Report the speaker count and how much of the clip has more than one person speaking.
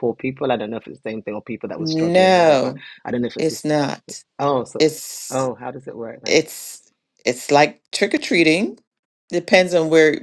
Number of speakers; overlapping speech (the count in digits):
2, about 14%